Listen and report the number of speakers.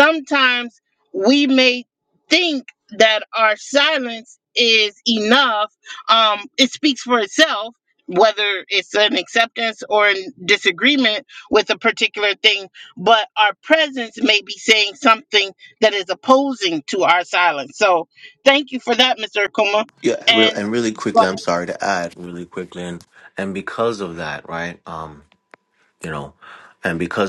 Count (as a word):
two